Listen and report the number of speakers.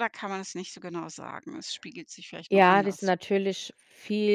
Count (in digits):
2